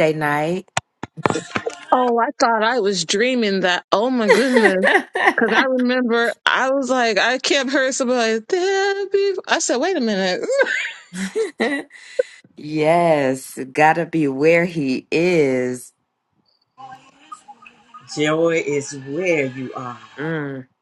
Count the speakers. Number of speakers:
three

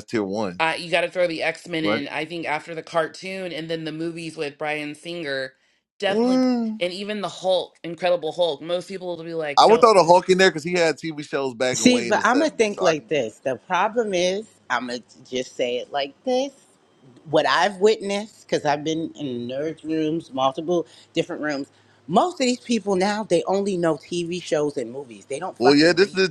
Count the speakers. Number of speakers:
three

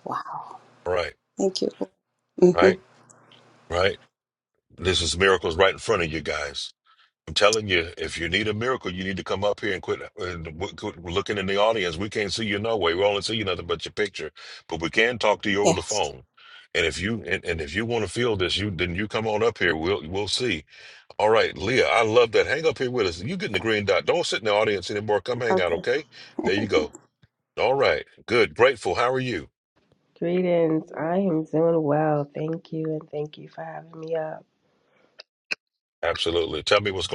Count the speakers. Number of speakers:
three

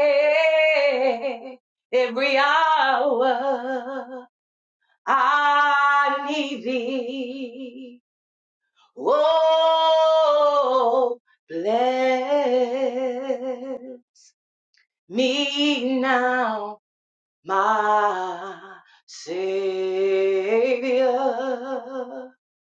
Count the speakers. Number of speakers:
one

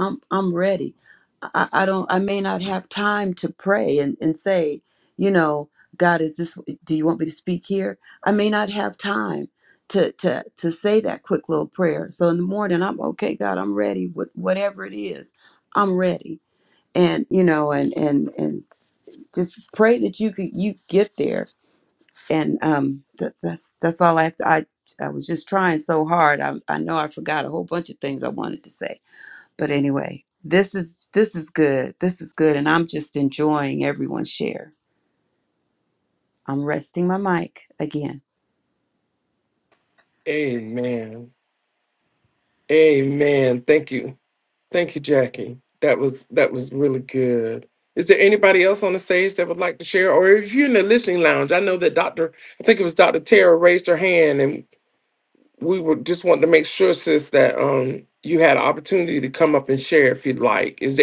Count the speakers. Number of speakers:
two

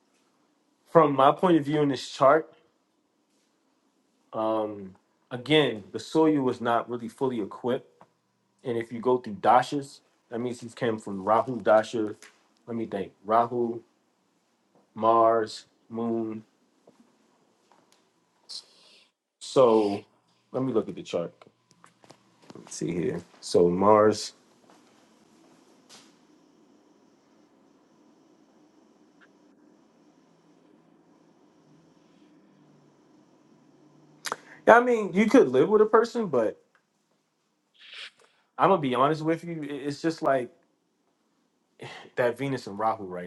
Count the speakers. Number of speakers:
one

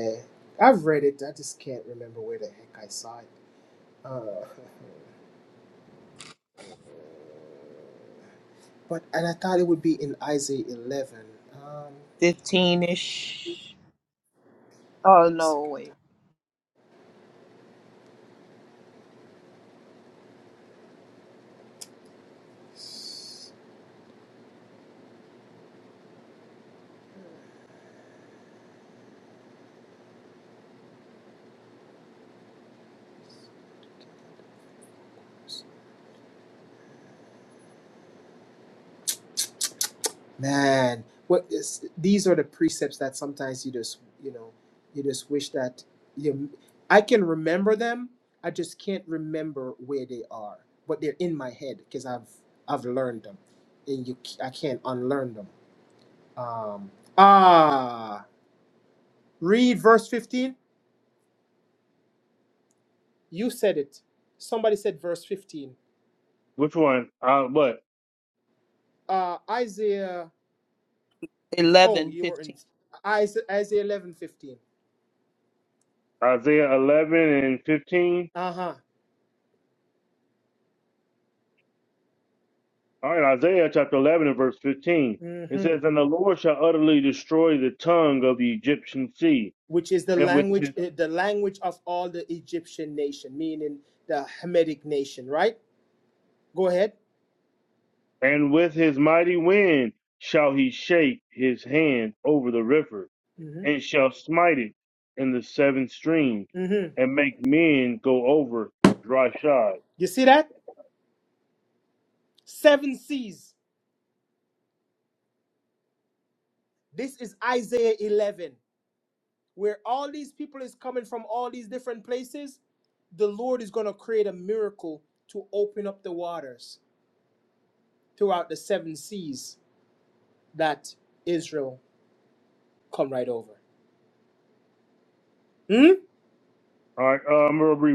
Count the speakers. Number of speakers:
three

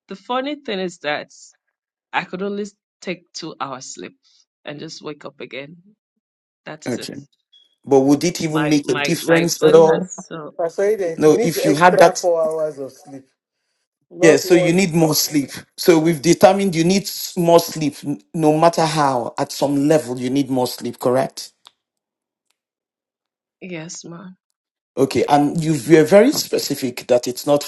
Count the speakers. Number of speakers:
three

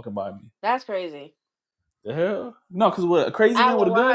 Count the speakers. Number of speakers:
two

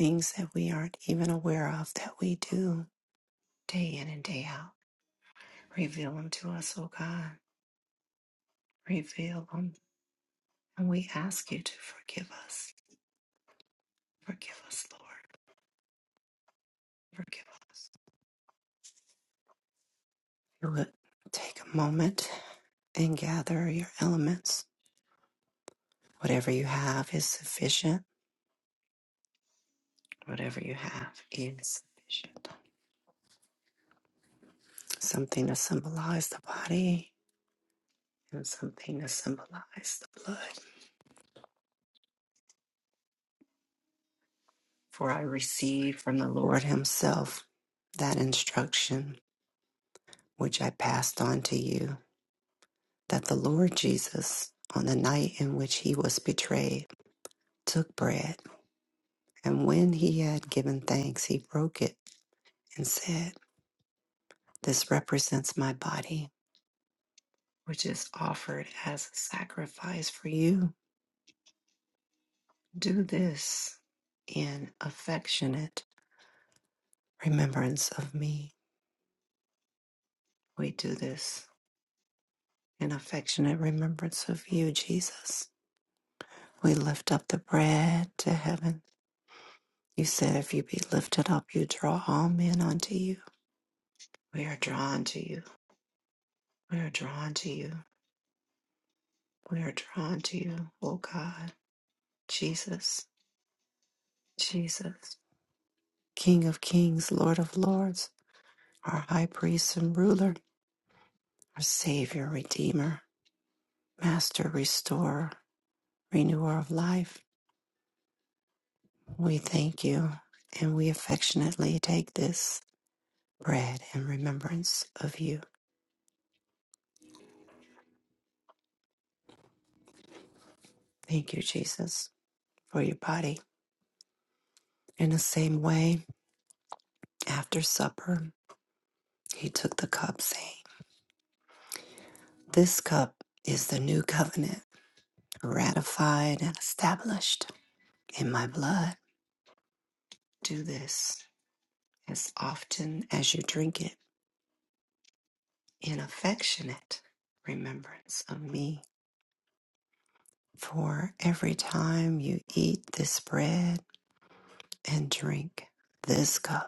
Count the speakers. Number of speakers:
one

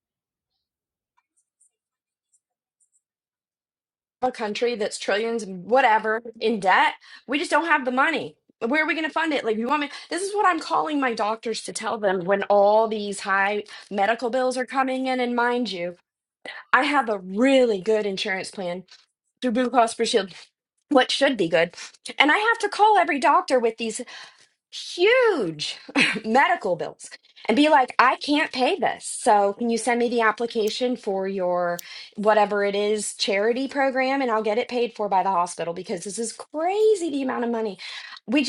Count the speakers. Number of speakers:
one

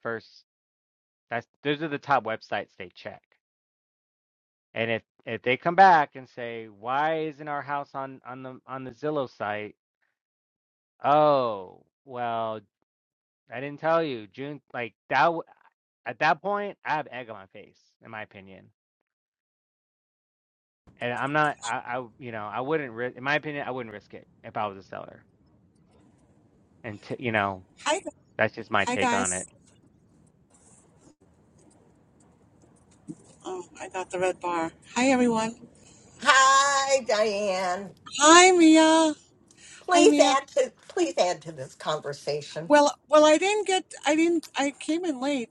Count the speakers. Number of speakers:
three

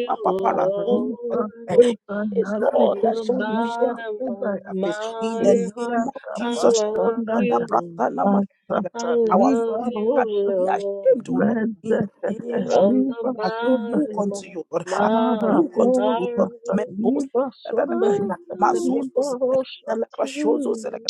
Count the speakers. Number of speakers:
three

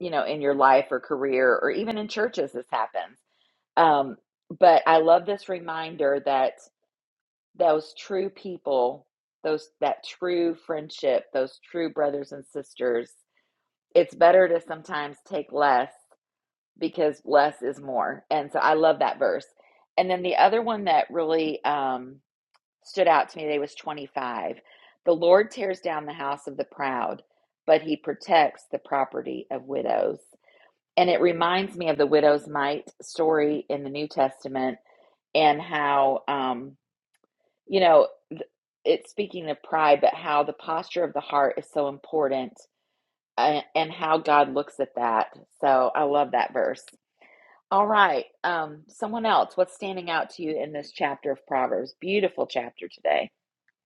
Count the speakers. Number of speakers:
one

